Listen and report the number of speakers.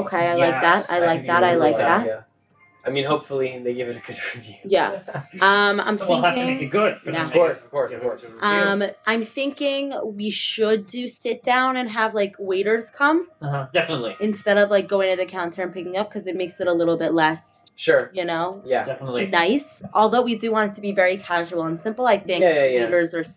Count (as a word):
three